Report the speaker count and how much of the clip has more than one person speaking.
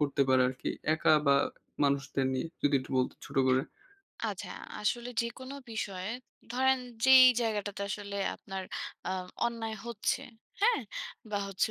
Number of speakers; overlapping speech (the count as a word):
two, no overlap